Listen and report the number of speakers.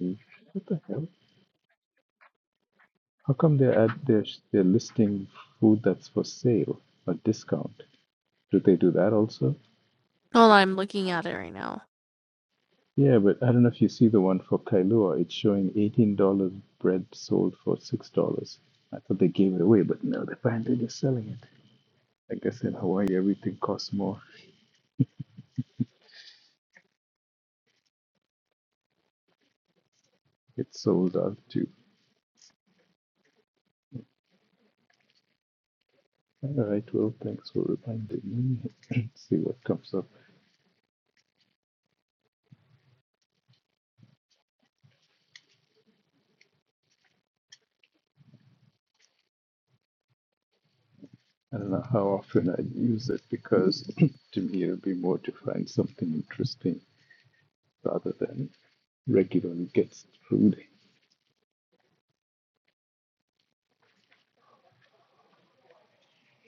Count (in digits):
2